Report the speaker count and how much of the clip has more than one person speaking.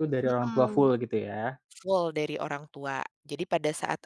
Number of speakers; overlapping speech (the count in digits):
2, about 16%